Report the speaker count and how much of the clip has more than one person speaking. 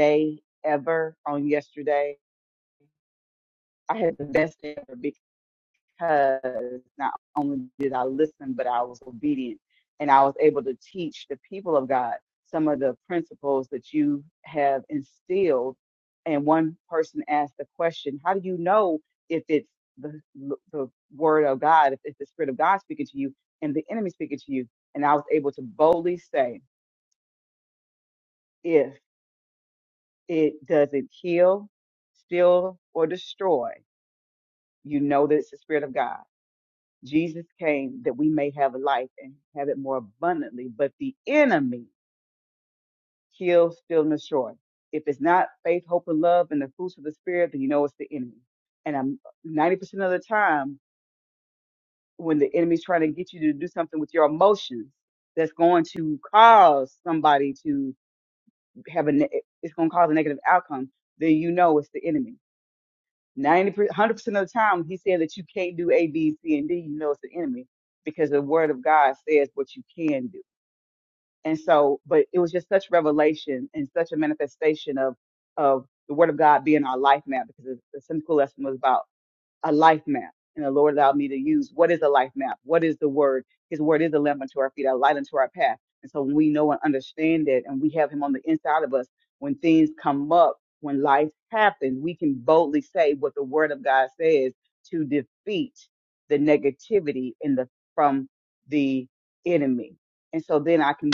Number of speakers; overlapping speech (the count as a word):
one, no overlap